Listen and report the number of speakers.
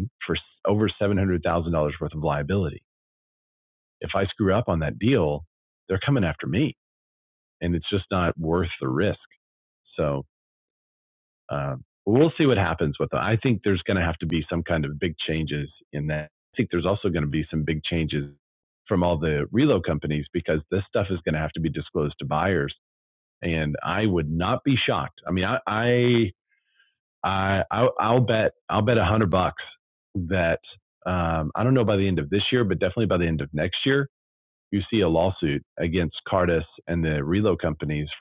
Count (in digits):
1